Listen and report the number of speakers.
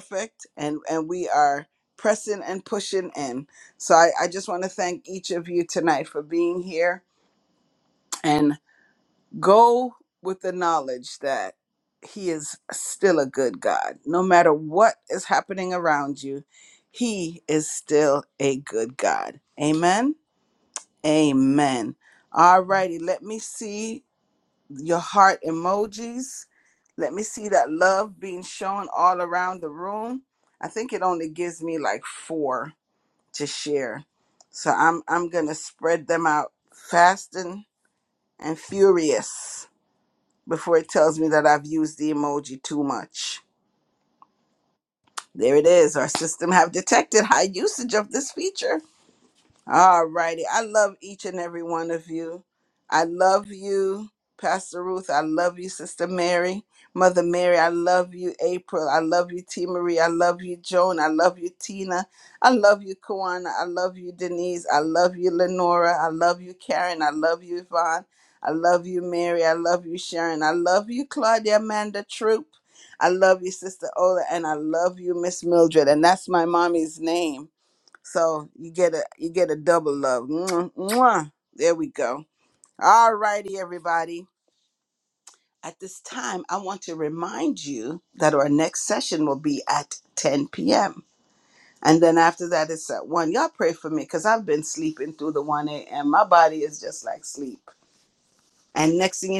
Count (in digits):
1